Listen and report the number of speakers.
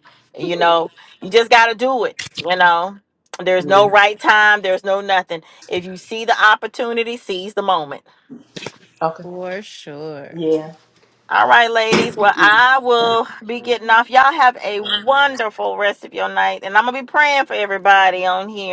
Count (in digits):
3